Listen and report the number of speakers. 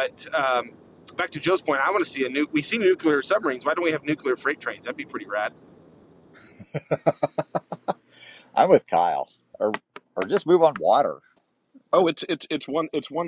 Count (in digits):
3